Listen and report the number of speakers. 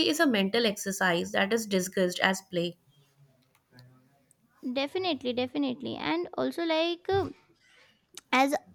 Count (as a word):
two